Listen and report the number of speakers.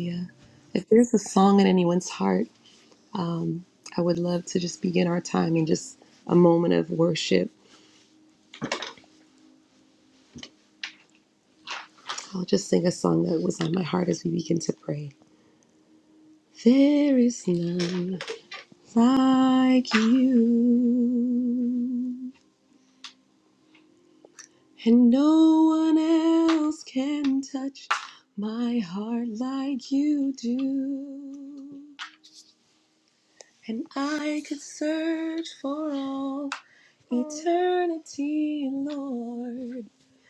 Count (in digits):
1